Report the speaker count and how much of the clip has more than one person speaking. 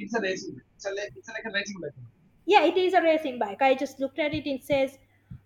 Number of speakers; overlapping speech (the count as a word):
two, no overlap